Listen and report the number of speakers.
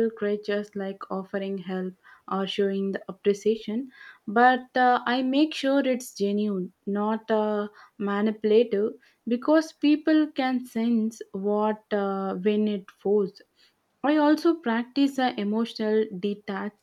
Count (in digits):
1